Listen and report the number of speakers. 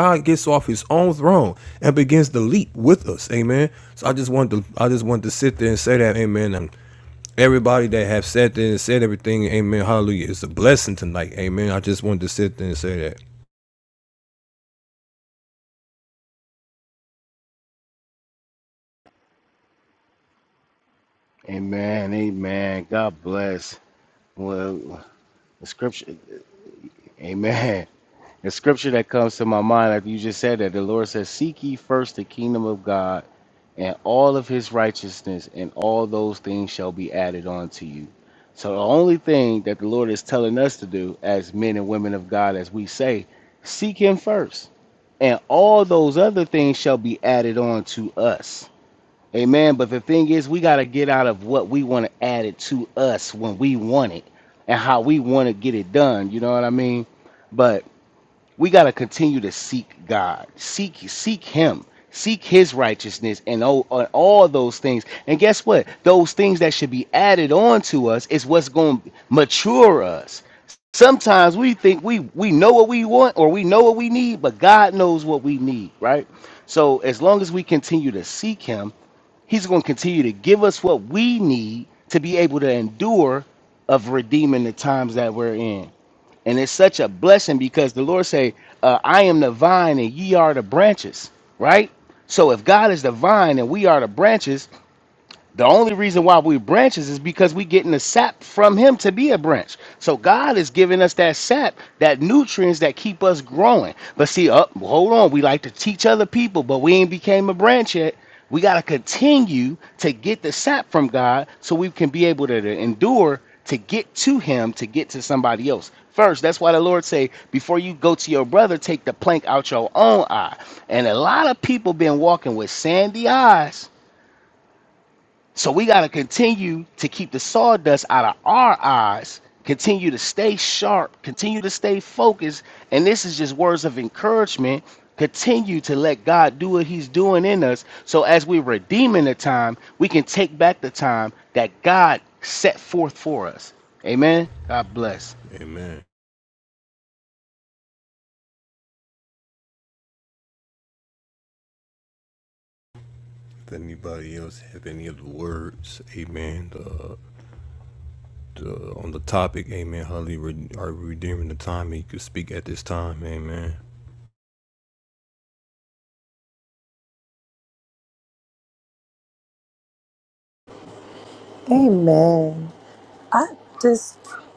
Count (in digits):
3